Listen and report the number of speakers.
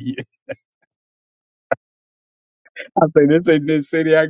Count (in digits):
1